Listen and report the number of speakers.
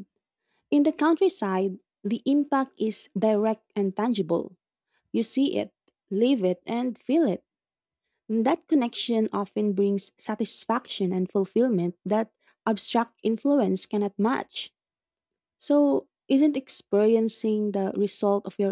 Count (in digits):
1